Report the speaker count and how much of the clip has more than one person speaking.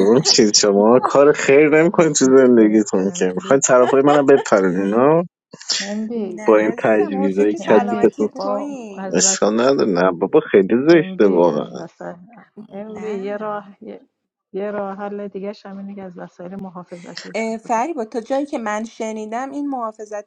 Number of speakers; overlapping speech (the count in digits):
3, about 34%